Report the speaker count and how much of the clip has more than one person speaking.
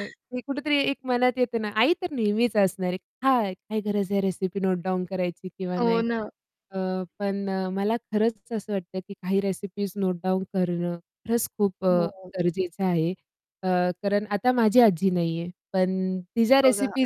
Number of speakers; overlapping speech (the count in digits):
2, about 4%